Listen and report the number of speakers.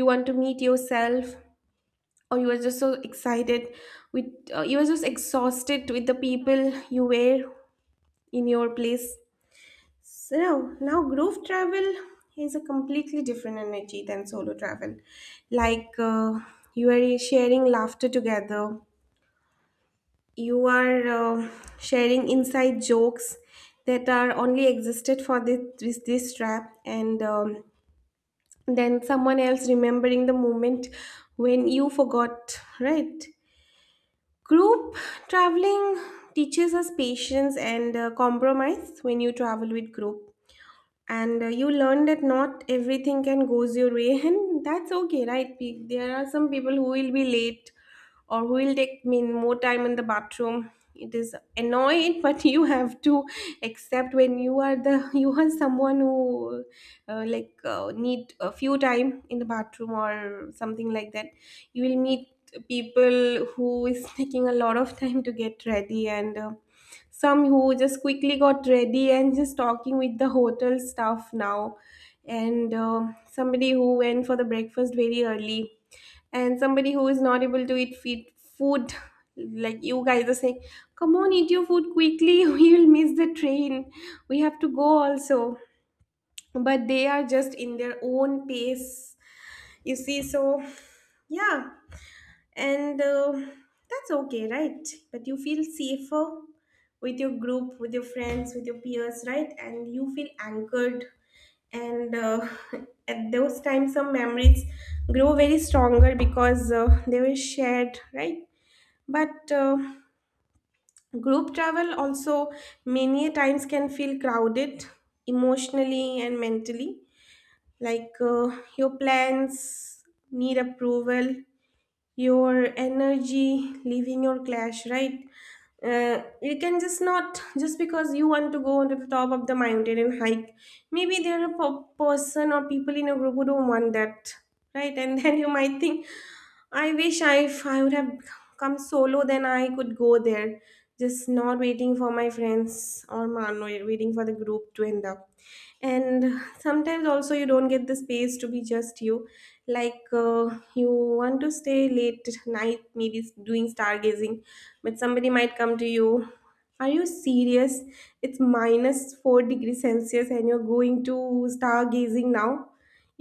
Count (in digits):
1